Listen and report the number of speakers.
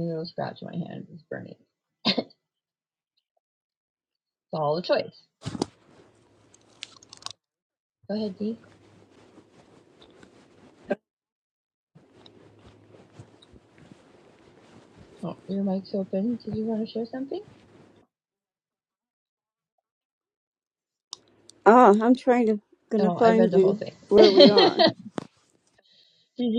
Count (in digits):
2